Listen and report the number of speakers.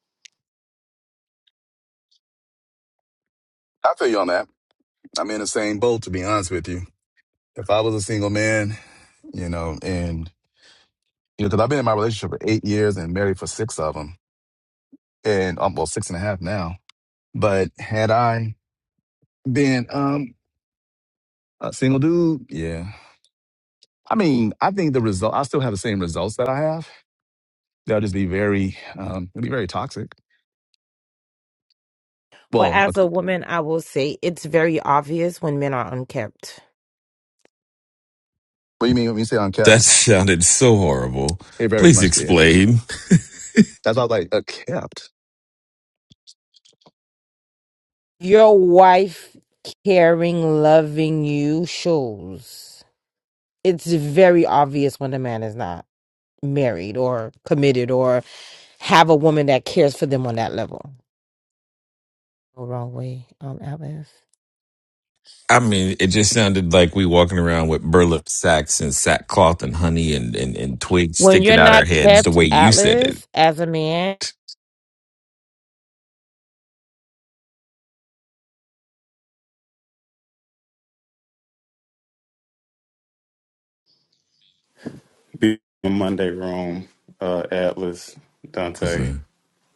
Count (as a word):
four